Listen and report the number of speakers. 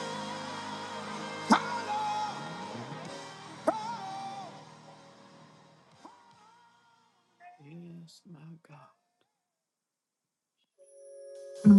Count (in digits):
0